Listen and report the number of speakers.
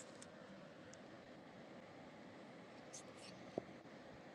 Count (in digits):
0